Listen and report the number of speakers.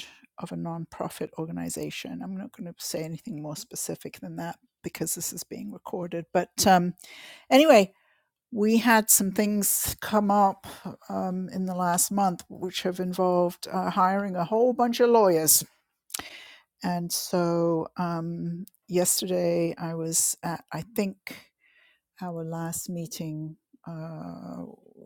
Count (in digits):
1